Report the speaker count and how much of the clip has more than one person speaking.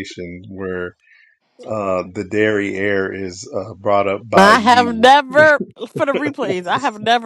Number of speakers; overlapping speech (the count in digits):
2, about 10%